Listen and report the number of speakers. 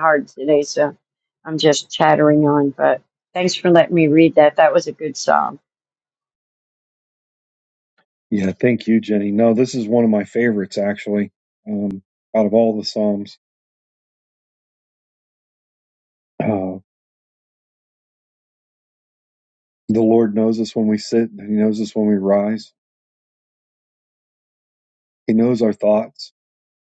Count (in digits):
2